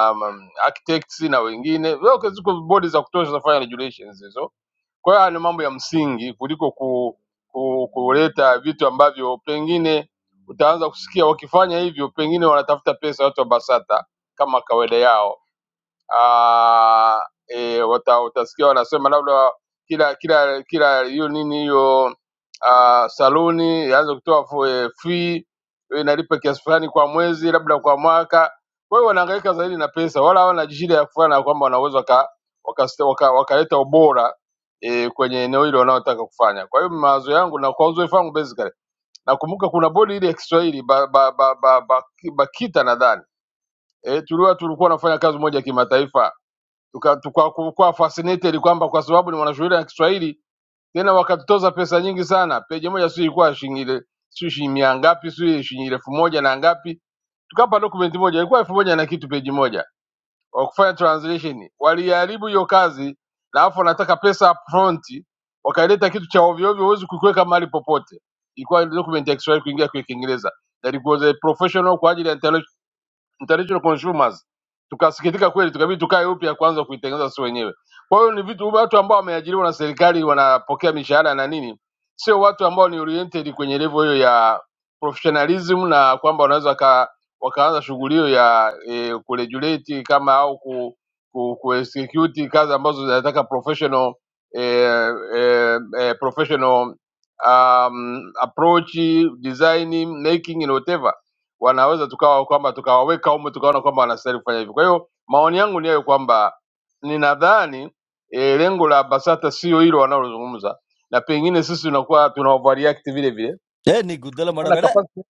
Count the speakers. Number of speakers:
2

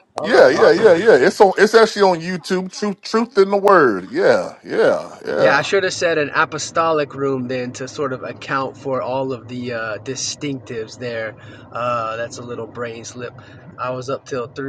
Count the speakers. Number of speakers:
2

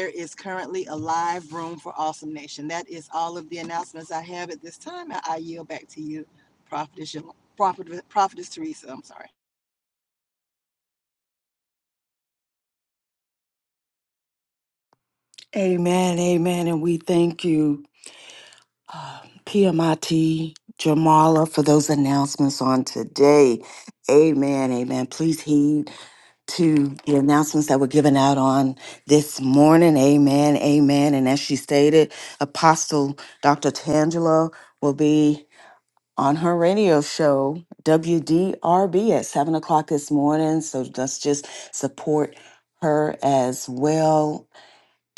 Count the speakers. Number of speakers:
2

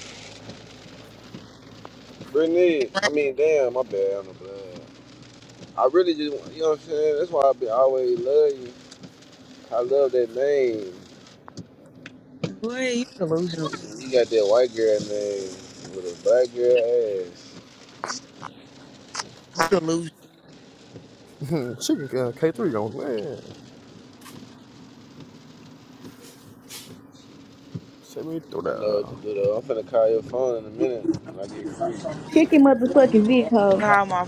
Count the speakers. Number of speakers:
4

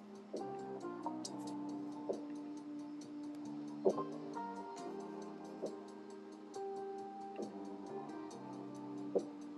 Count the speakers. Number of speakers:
0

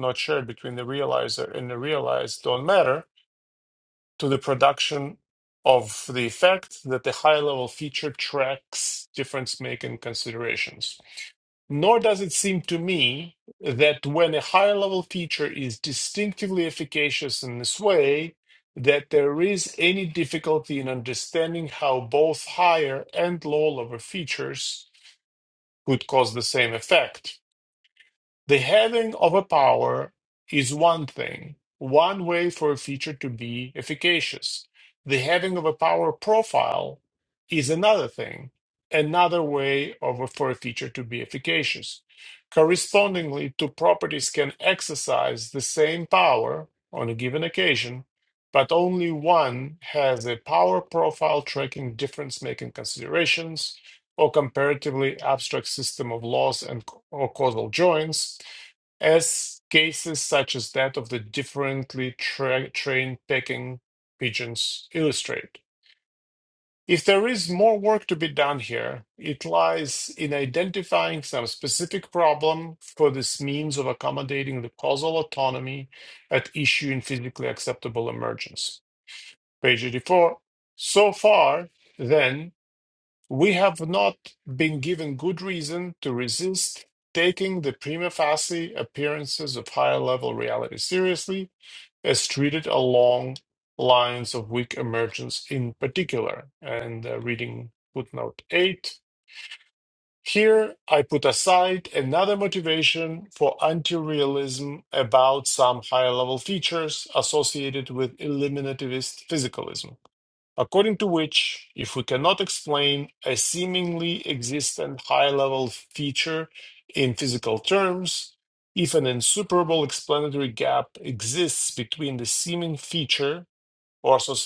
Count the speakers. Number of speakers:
1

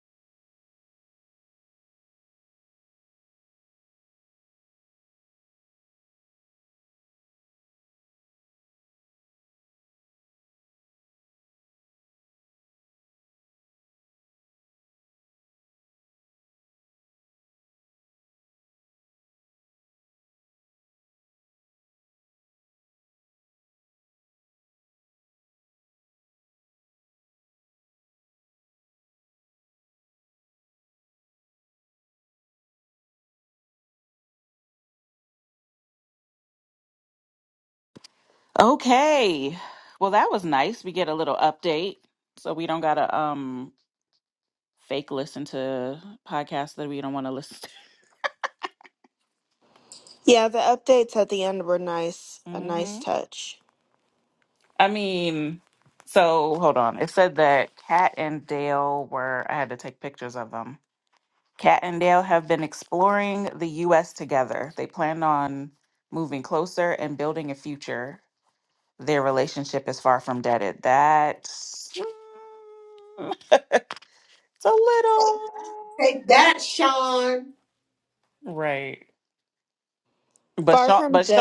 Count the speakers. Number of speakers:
3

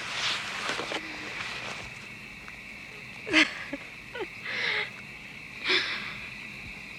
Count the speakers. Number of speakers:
0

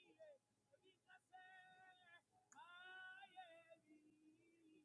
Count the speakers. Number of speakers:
0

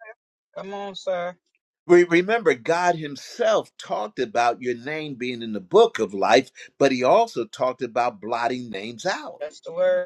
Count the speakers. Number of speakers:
2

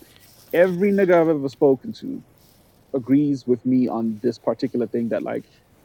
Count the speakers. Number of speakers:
1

